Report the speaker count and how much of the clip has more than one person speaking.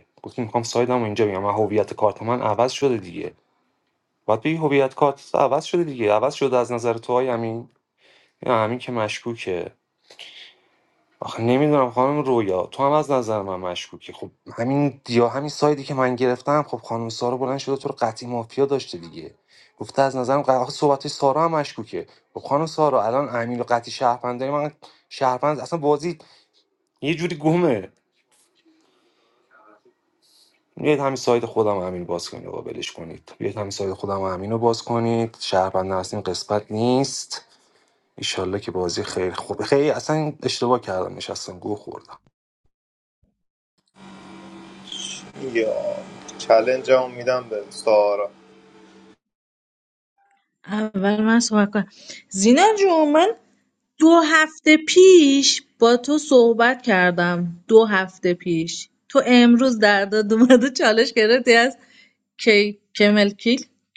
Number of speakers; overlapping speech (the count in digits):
3, no overlap